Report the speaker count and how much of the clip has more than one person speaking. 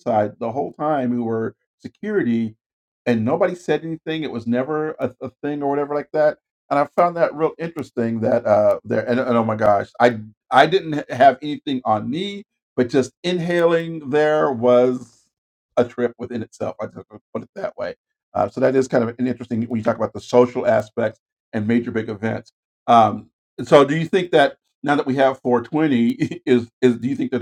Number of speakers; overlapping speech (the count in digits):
1, no overlap